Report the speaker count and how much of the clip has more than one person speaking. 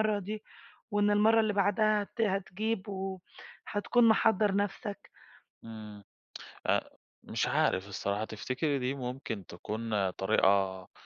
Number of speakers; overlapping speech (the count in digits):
2, no overlap